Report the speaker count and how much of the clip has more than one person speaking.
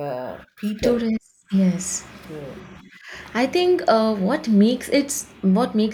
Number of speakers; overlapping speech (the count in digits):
2, about 4%